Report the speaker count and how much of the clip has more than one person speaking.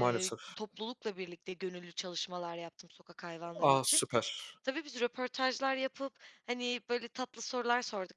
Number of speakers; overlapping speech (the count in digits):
2, about 13%